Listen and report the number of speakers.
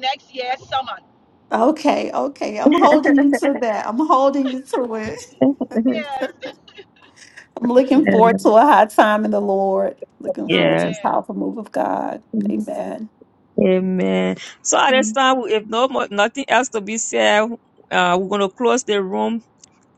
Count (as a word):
three